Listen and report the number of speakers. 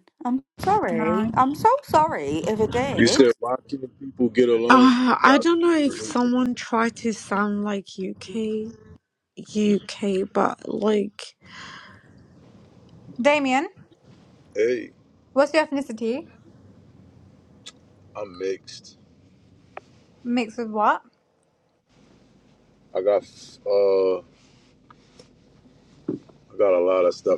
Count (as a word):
four